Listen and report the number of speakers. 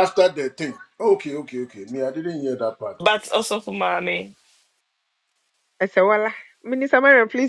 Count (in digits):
3